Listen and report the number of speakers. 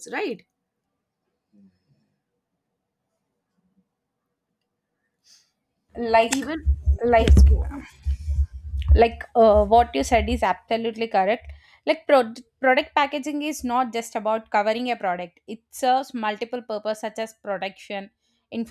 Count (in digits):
2